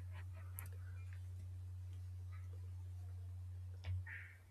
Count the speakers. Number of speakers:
zero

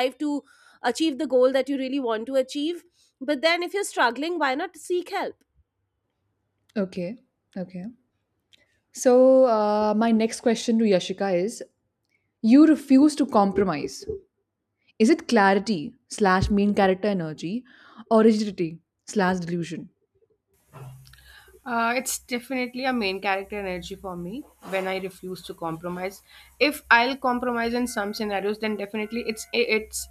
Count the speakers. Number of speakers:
three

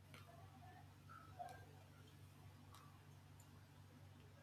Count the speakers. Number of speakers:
zero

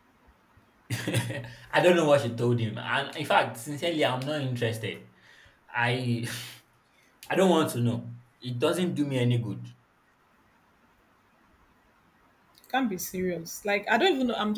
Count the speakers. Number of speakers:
two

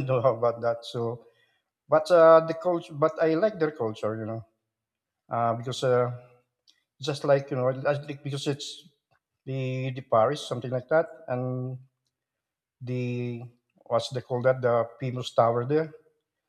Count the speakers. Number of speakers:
one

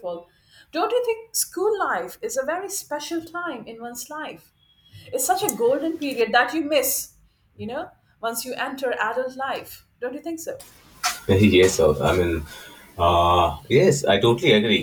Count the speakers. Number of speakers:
two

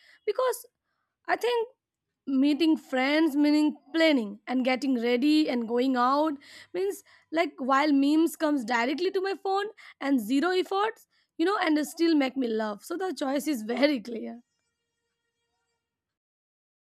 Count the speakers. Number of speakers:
one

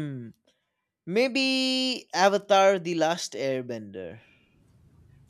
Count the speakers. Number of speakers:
one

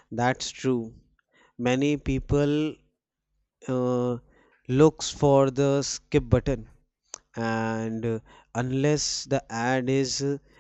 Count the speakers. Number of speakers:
one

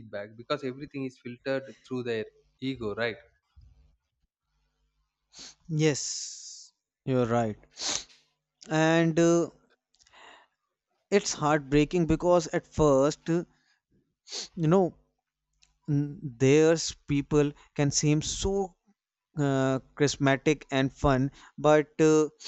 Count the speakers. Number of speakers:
two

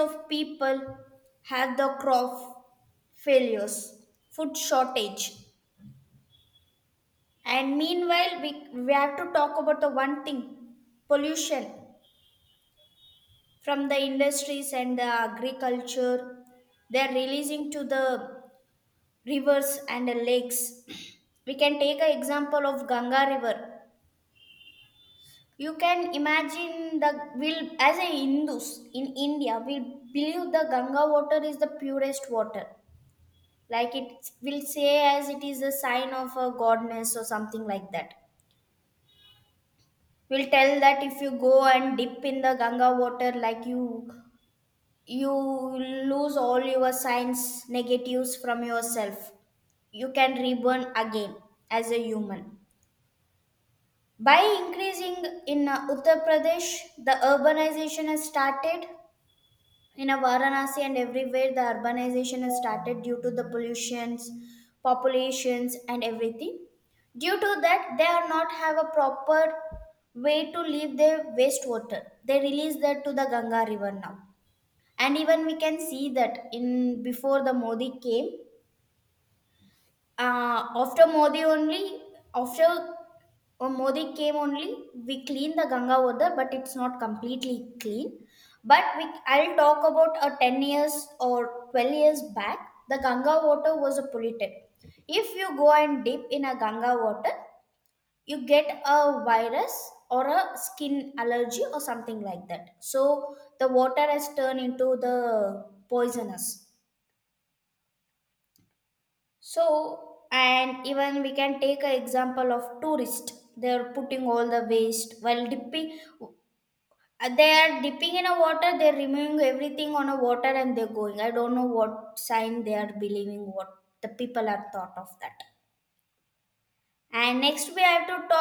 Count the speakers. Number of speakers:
one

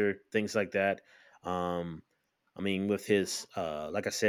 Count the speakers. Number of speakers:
one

